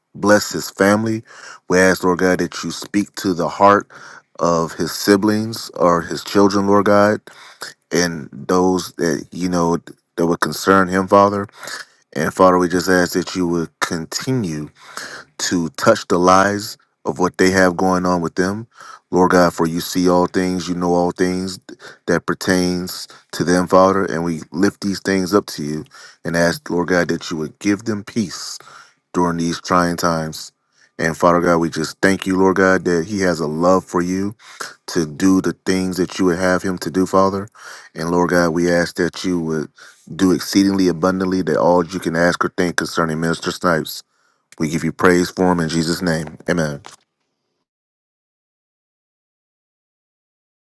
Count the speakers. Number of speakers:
one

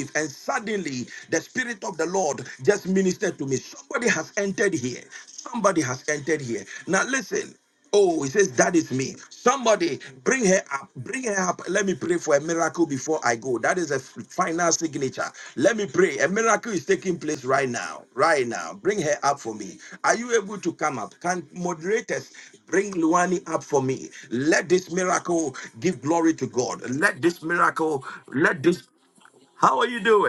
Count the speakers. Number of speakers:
one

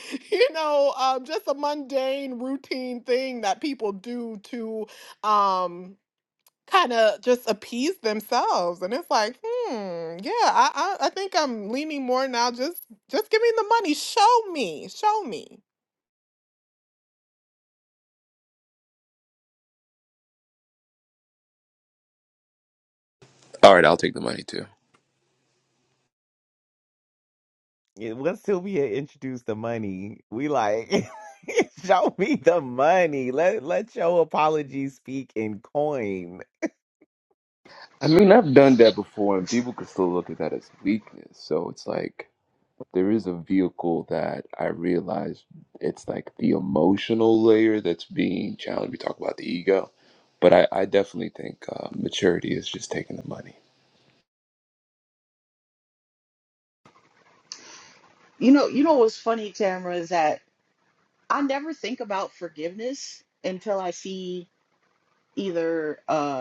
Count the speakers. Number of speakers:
four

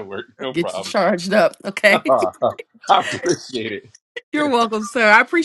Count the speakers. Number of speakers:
two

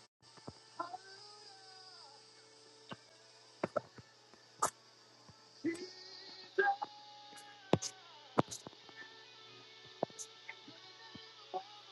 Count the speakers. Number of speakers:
zero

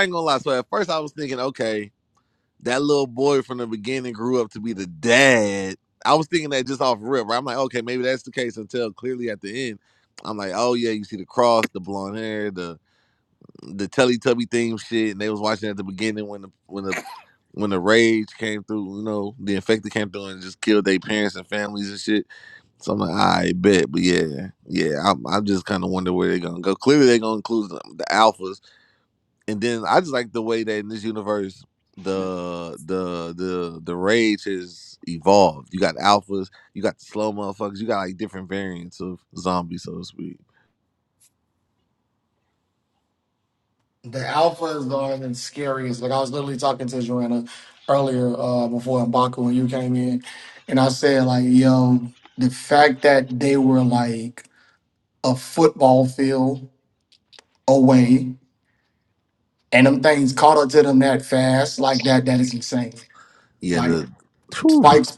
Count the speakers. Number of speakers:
two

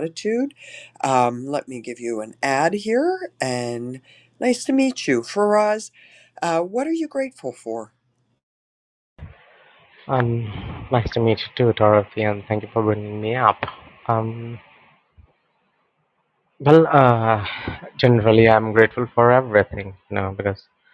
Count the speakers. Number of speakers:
two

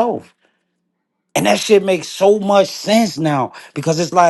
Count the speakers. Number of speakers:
one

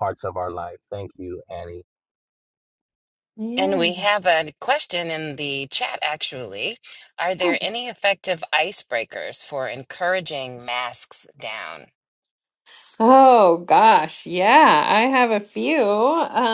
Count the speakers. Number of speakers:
three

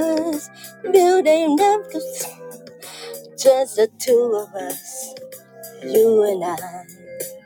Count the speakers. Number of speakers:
one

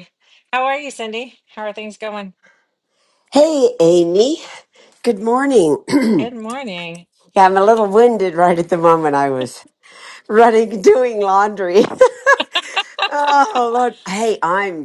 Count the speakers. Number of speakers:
two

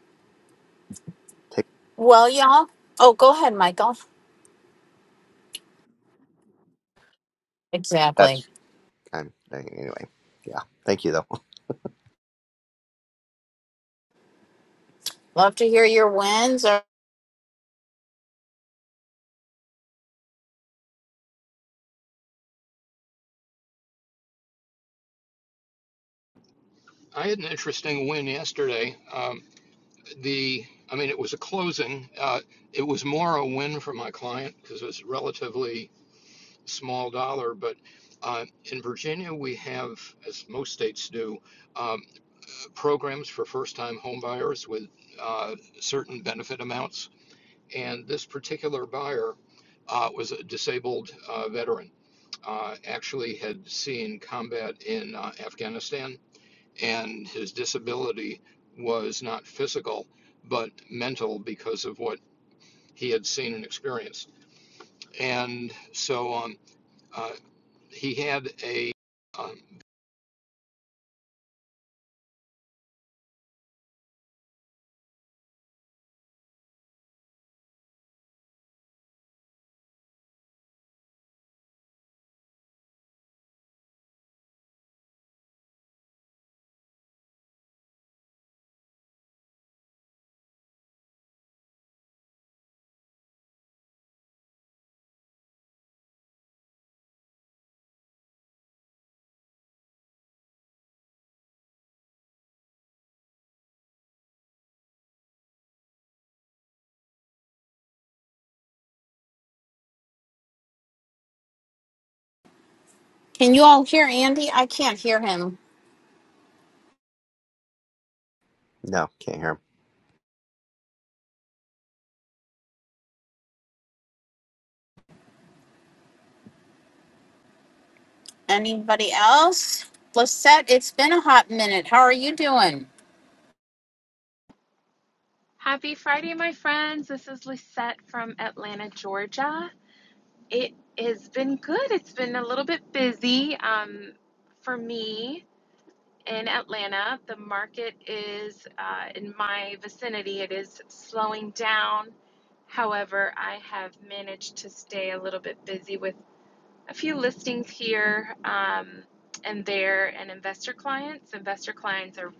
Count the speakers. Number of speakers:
four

